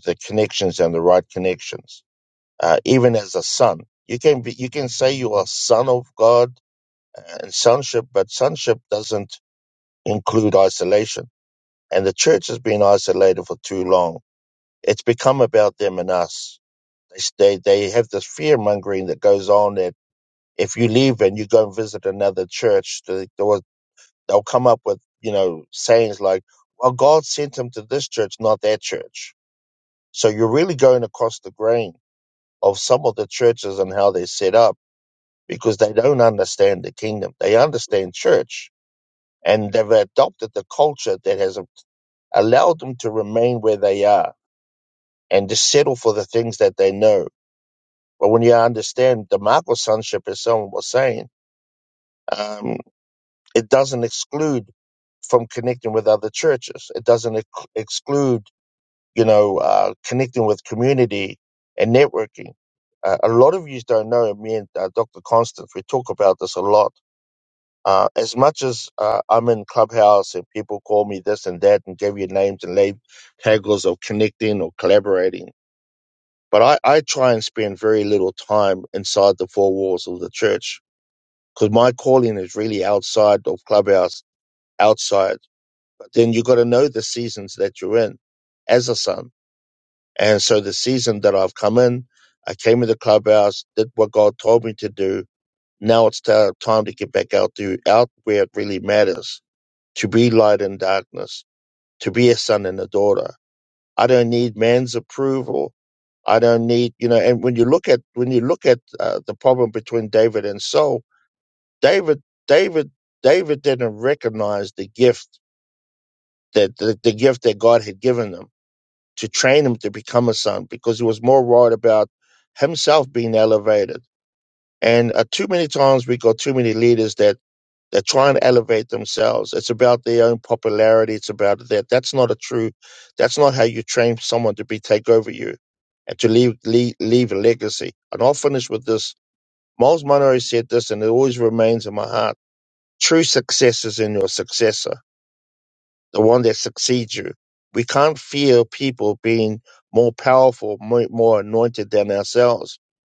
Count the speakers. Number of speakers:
1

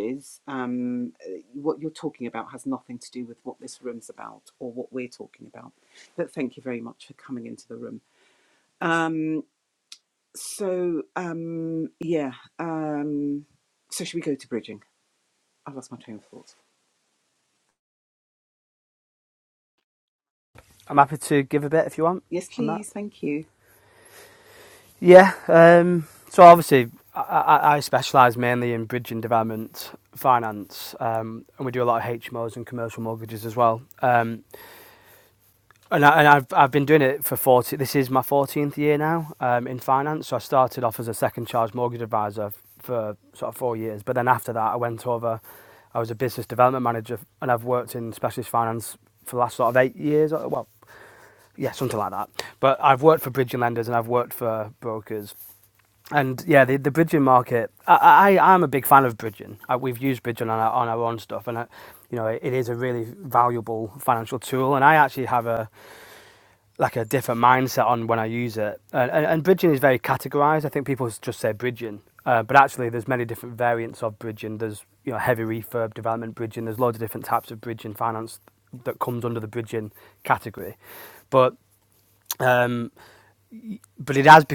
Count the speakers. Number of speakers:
2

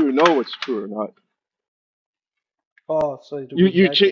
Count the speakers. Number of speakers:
2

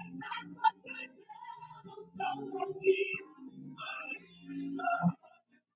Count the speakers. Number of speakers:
0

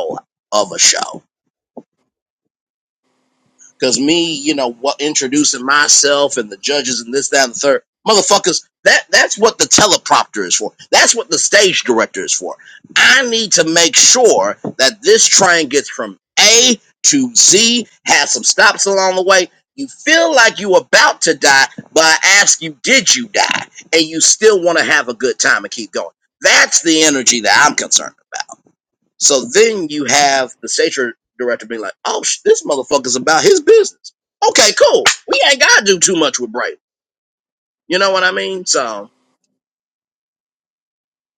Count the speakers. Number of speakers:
1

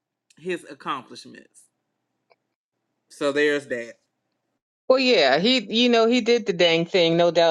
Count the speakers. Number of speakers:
2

